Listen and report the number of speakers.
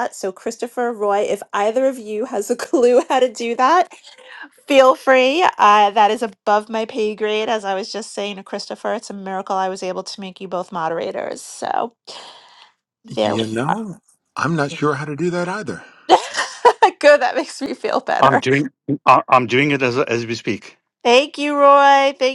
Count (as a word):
three